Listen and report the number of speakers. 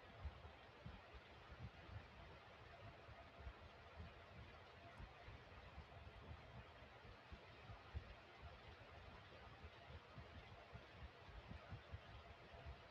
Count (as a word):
zero